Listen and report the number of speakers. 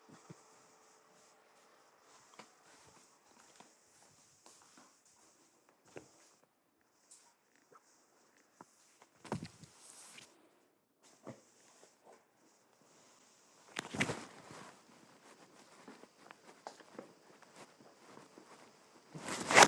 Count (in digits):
0